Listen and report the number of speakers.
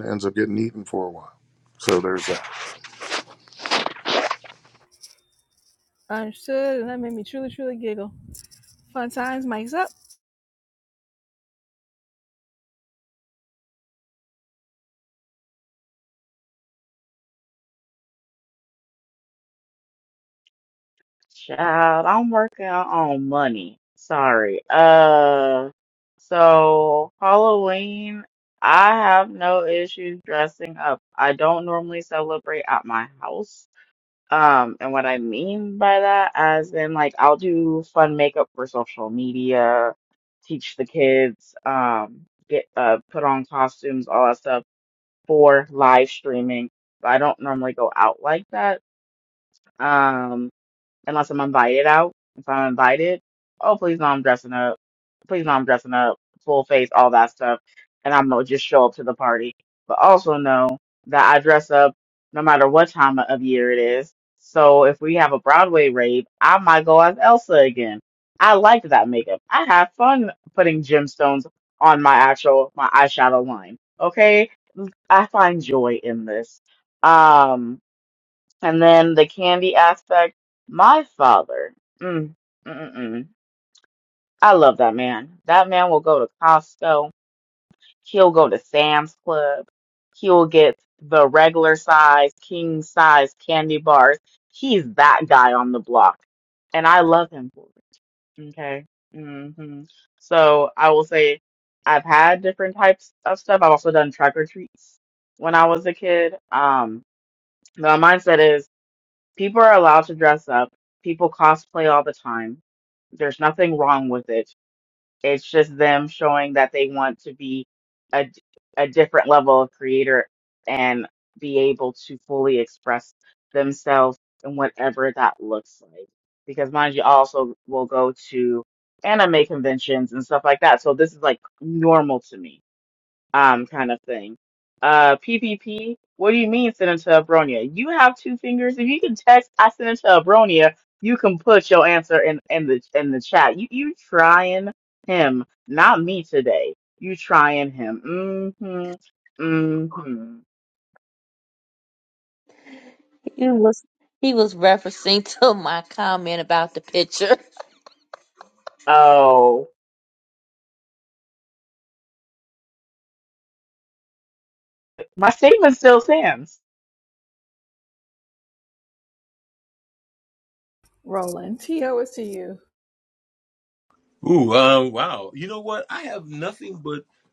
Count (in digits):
5